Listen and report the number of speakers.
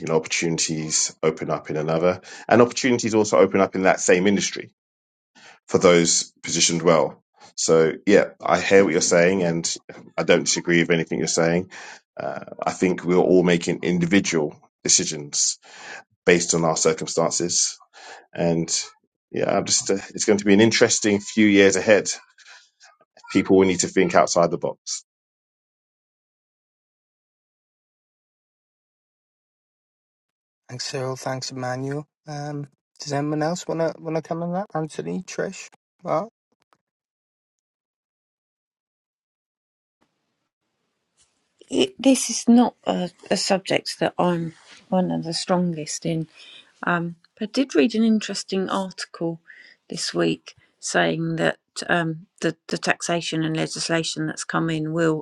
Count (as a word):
three